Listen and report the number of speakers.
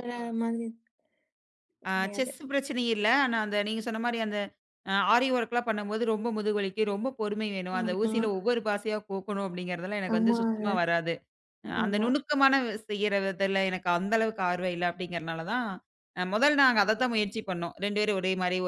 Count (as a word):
two